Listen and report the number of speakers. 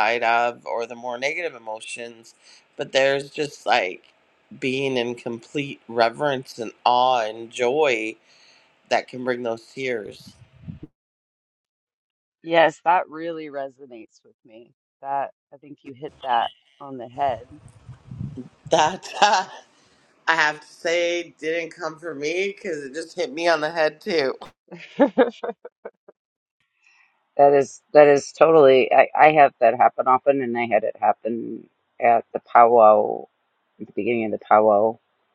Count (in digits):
3